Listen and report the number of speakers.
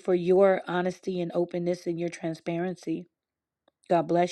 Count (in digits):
1